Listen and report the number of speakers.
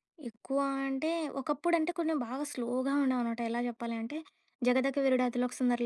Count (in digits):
1